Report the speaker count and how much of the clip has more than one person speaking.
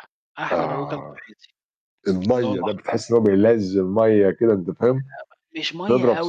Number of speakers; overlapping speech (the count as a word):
two, about 24%